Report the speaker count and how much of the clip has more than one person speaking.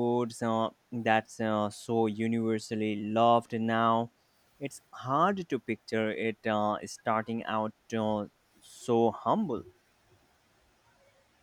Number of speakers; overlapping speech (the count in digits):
1, no overlap